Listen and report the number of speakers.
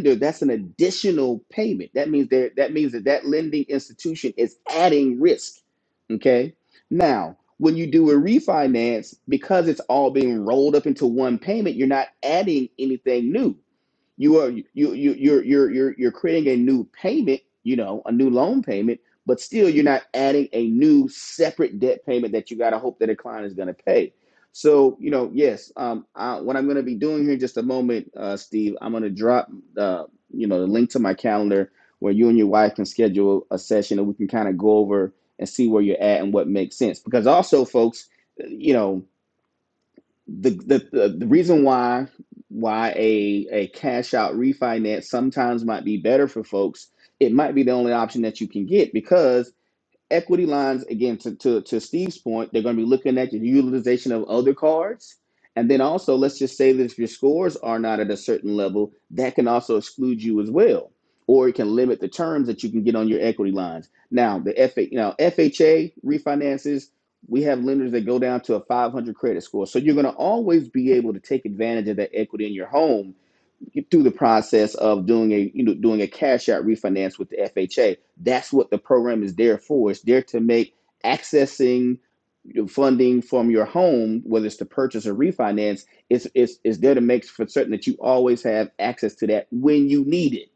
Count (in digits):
1